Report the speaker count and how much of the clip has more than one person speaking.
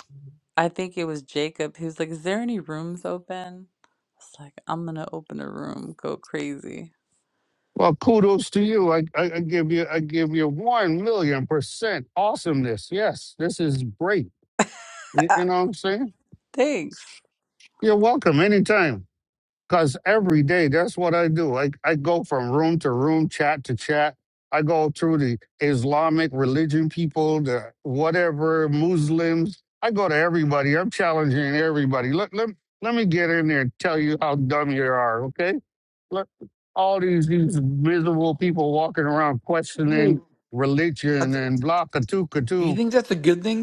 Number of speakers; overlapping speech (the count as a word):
three, about 1%